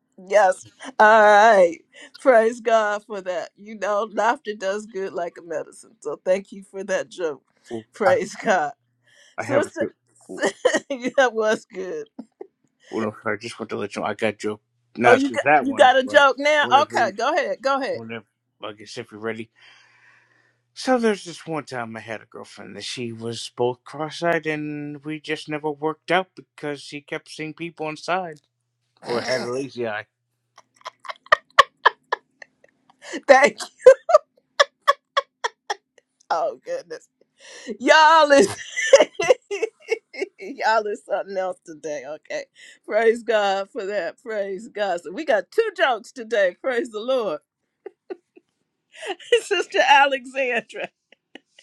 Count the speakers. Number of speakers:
2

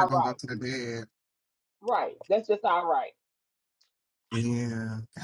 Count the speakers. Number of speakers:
2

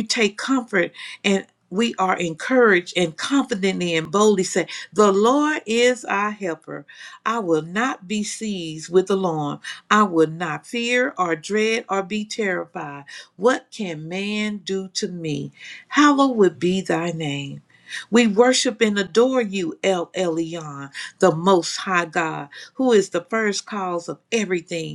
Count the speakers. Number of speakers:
1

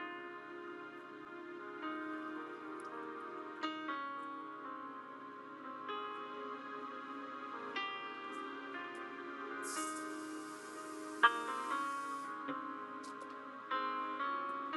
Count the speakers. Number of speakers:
0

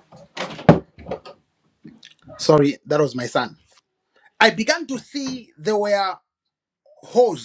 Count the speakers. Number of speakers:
1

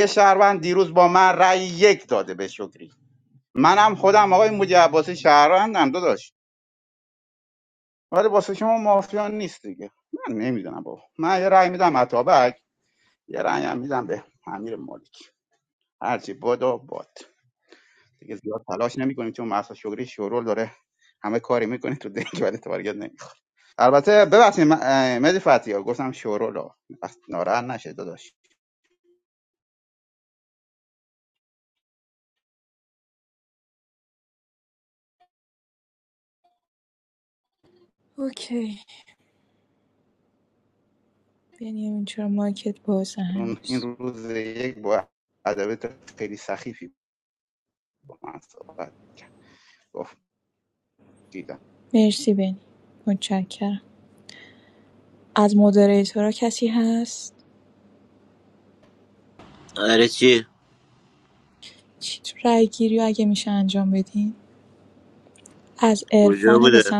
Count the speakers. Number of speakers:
3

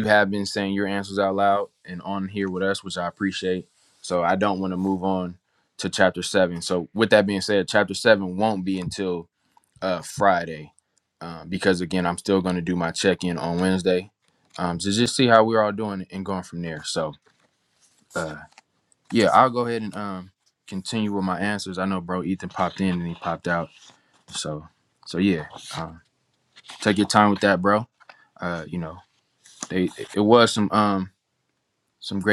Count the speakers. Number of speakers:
1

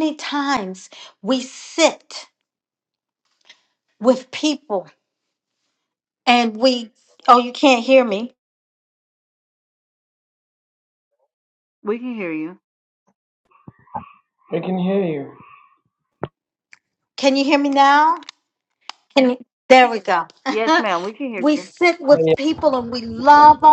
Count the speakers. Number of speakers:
3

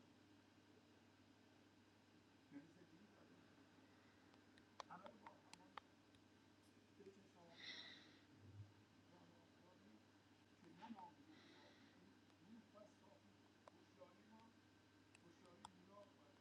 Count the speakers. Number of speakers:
0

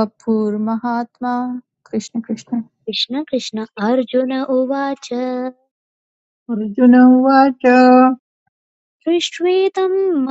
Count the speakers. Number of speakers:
3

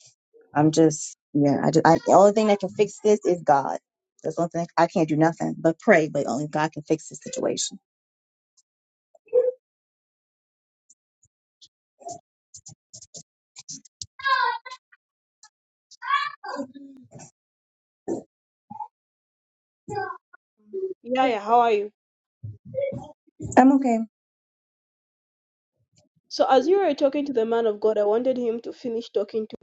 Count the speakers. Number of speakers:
2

